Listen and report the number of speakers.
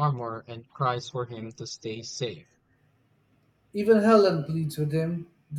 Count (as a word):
two